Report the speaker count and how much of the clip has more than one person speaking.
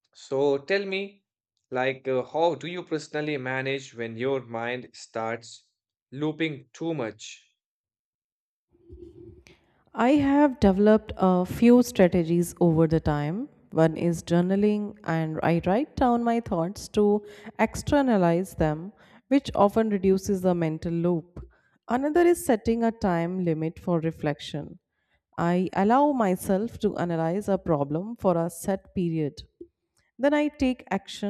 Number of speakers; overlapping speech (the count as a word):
two, no overlap